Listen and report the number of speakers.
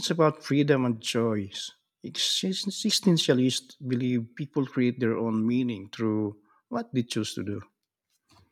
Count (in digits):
1